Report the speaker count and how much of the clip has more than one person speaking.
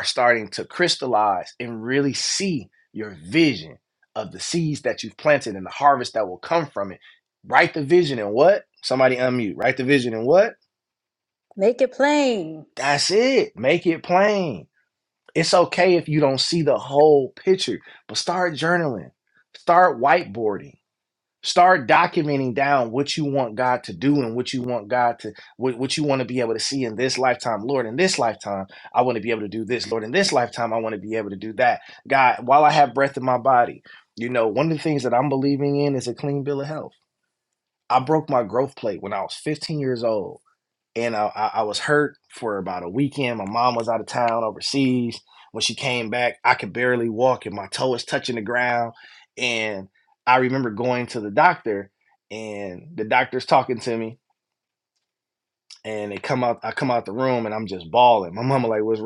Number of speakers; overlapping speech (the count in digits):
2, no overlap